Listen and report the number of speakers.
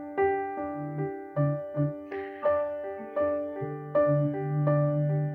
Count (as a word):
zero